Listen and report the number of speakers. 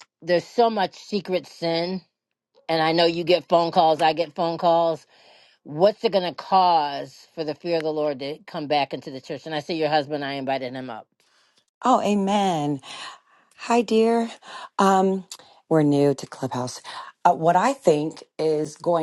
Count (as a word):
two